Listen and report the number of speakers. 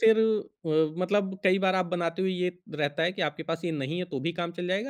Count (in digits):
1